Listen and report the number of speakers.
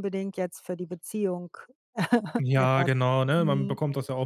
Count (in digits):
2